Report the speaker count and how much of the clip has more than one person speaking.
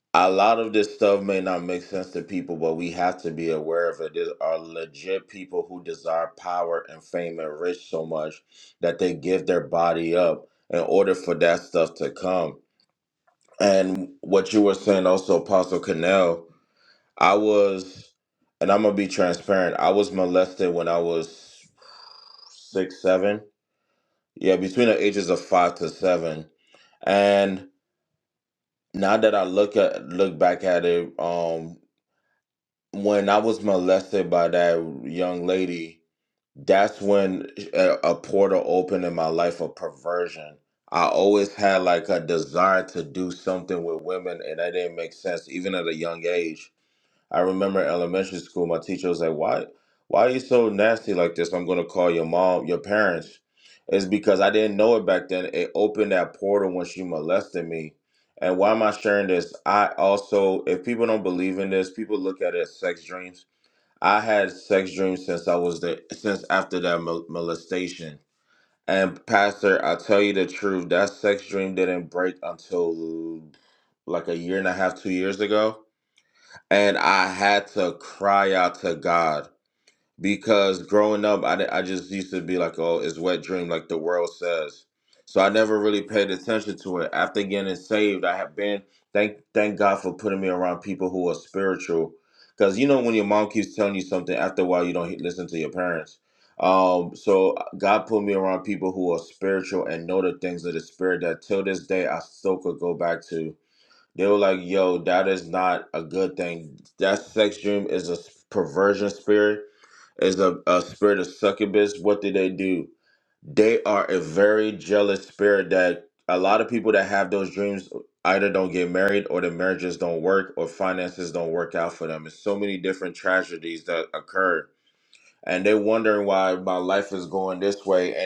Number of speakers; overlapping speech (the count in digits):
1, no overlap